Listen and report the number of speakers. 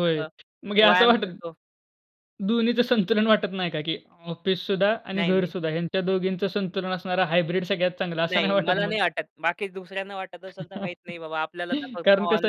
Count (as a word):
two